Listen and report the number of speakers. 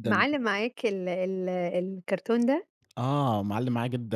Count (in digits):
2